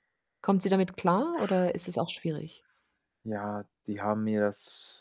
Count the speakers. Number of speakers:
2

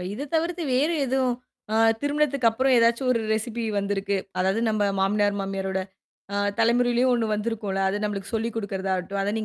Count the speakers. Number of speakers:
1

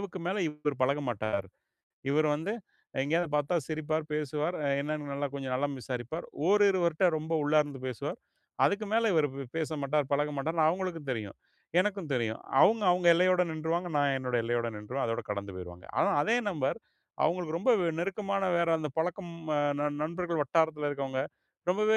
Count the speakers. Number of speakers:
1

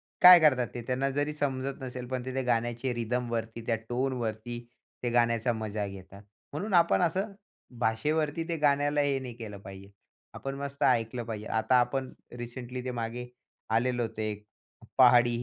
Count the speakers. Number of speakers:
1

